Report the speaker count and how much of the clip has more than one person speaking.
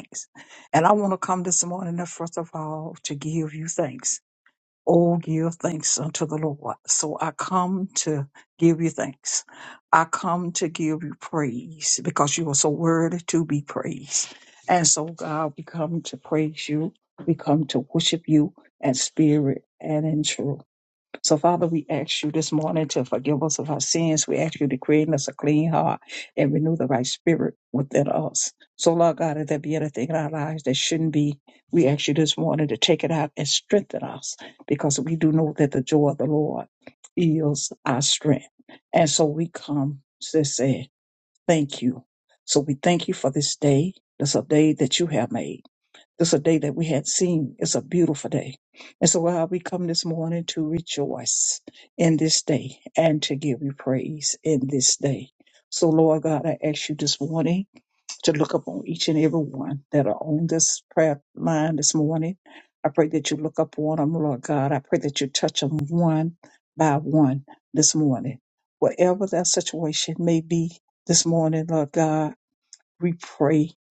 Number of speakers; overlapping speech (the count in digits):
1, no overlap